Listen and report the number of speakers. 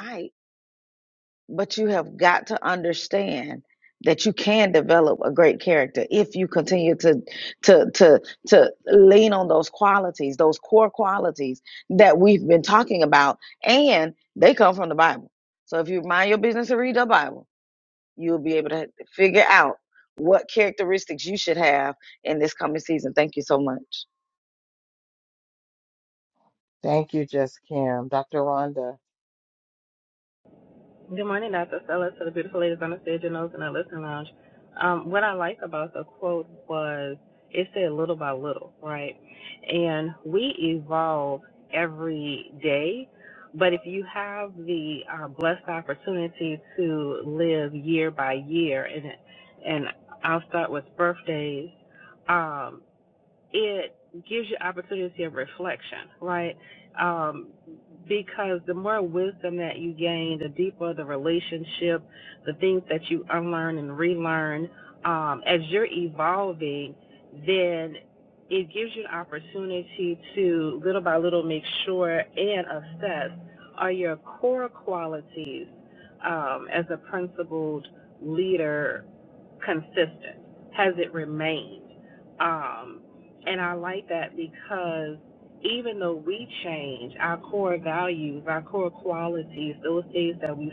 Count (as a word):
three